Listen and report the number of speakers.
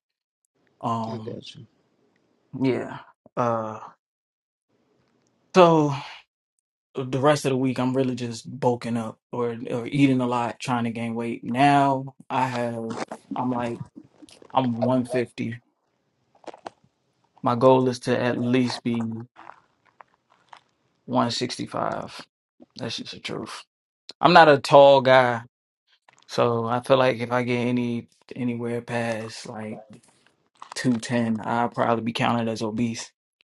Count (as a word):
one